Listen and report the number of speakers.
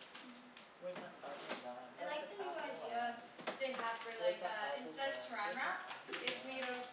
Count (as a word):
two